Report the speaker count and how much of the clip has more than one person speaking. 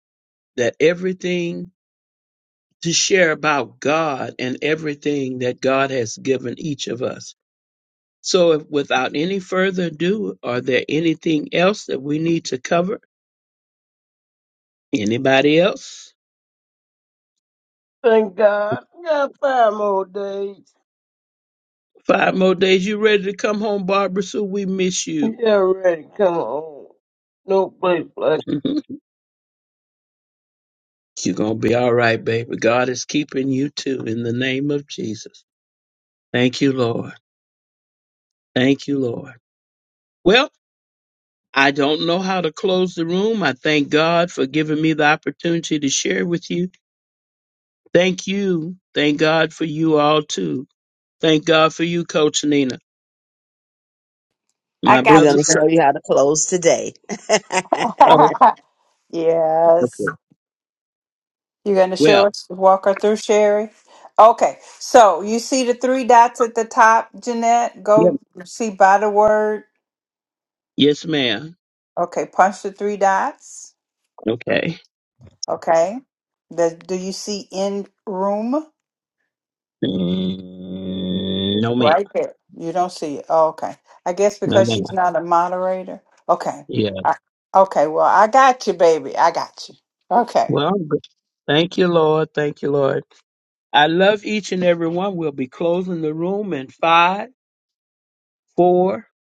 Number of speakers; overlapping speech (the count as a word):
four, about 2%